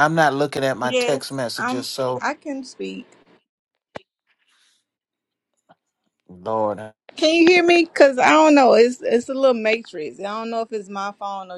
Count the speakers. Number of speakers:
2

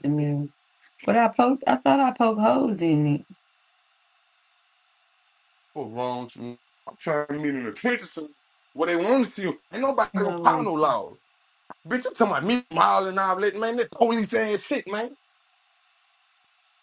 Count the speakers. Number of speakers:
2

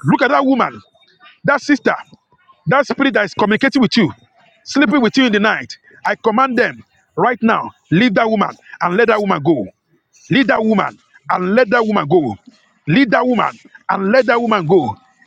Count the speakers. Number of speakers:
1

